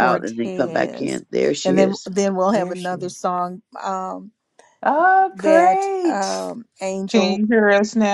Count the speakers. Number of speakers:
4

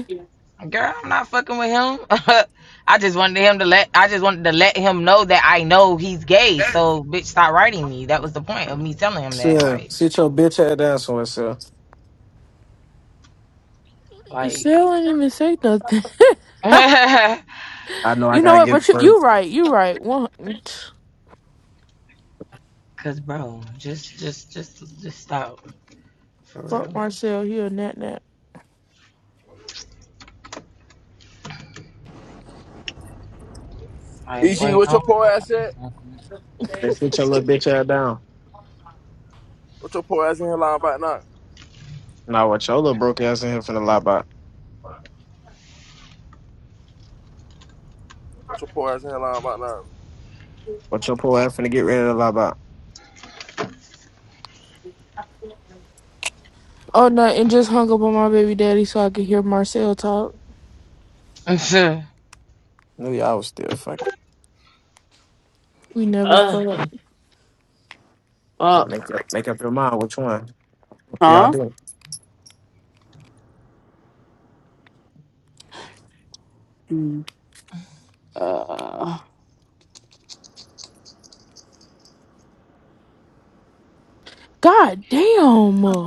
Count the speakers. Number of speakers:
5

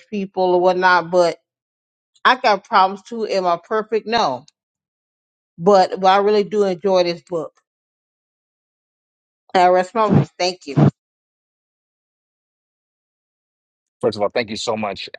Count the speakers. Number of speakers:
2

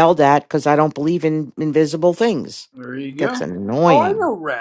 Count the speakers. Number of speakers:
2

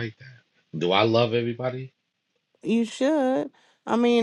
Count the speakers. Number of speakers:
2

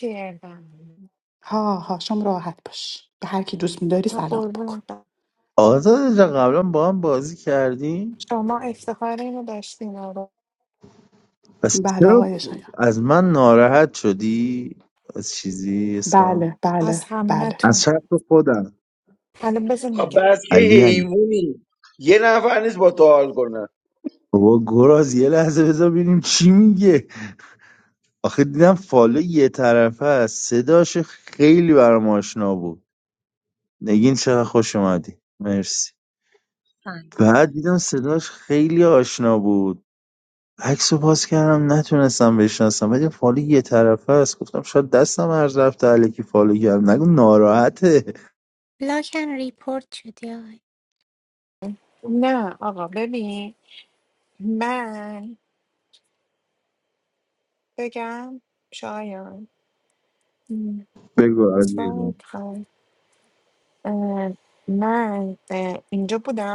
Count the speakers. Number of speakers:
5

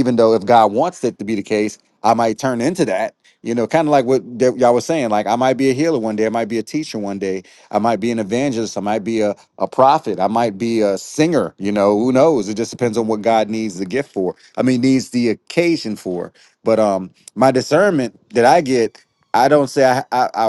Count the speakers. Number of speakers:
1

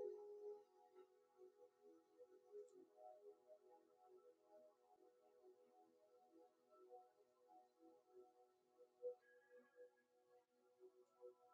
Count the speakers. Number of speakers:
0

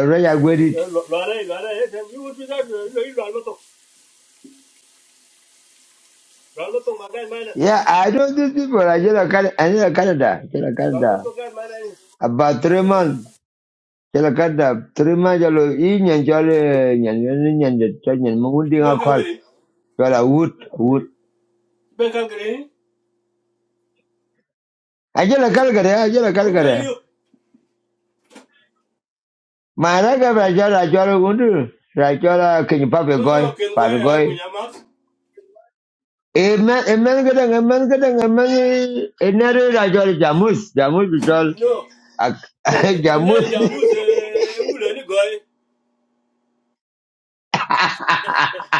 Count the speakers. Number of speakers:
2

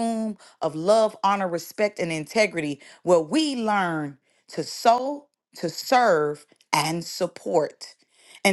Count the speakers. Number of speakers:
1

